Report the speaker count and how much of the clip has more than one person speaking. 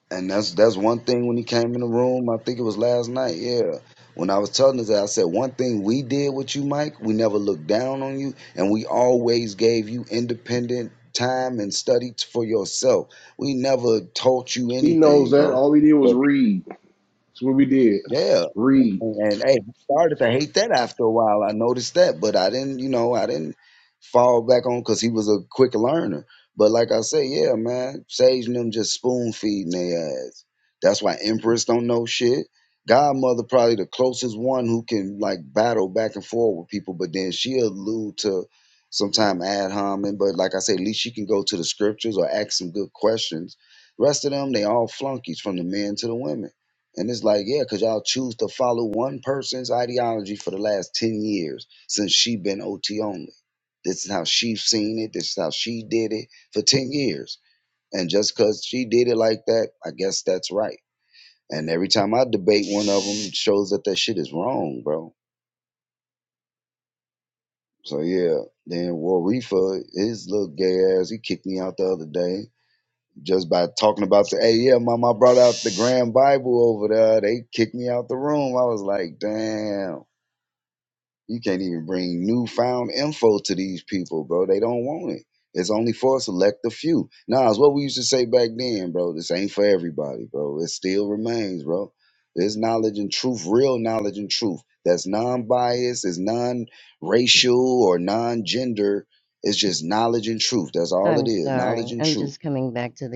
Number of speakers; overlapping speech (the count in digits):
3, about 2%